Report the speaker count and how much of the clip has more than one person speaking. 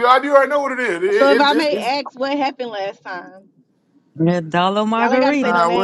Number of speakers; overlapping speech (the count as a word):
three, about 26%